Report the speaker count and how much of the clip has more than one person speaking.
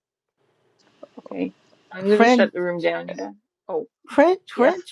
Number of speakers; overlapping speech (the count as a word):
two, about 15%